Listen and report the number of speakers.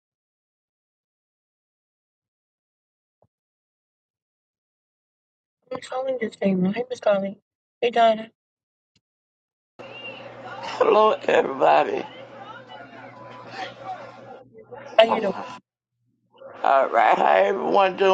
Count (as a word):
two